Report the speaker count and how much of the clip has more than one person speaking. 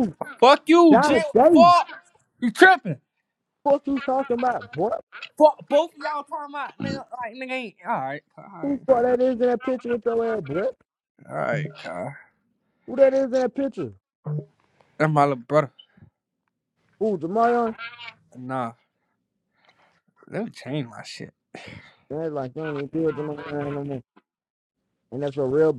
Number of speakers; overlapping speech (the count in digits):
2, about 4%